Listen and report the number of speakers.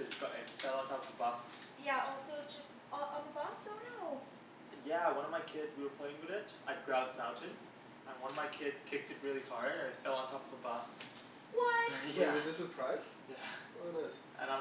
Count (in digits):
3